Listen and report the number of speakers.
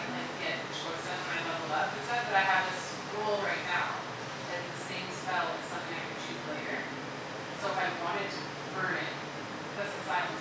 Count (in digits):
1